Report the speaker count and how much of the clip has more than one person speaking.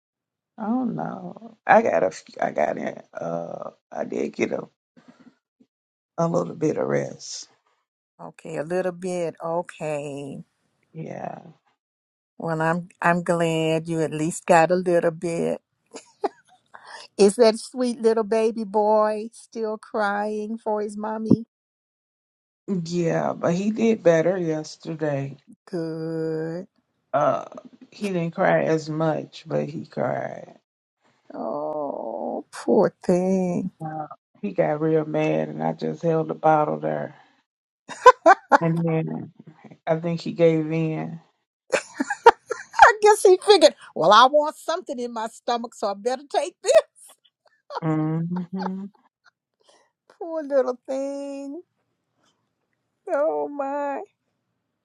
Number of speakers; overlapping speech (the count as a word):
two, no overlap